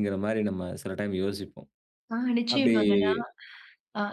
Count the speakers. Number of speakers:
2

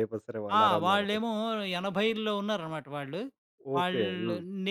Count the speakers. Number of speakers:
2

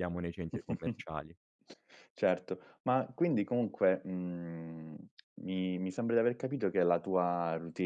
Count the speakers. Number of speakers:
2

